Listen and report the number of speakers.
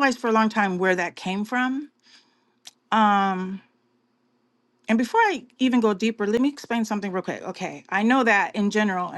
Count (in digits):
1